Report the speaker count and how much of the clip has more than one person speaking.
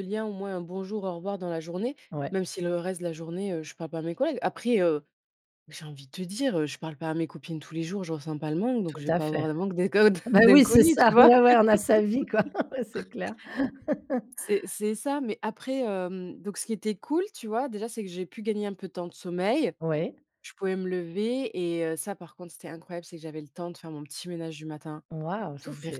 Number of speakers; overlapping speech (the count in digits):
2, about 9%